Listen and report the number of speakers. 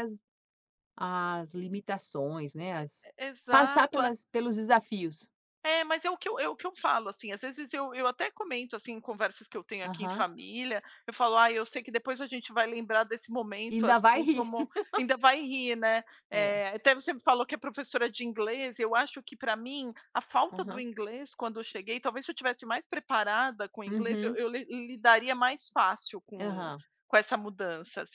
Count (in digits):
2